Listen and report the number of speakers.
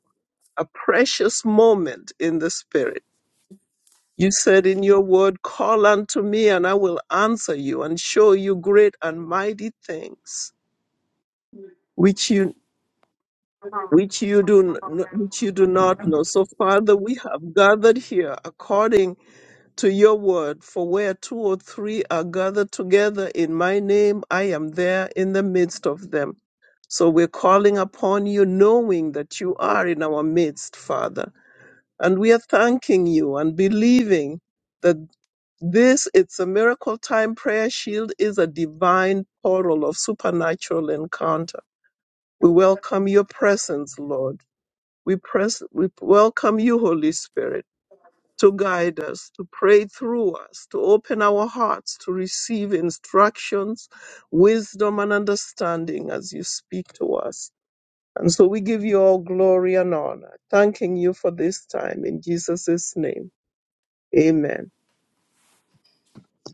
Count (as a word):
one